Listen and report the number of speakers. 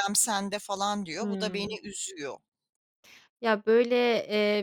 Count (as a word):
two